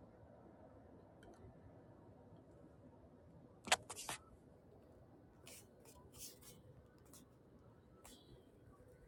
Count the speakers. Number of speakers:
zero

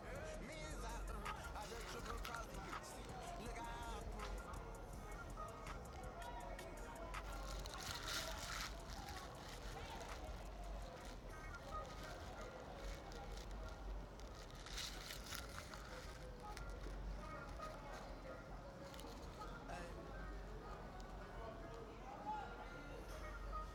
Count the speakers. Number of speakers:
zero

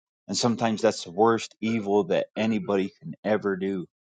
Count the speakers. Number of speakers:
one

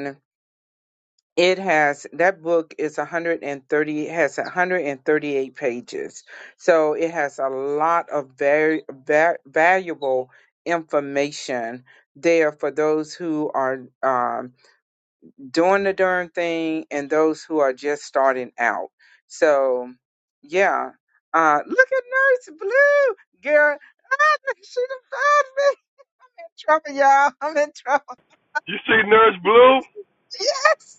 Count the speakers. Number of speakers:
two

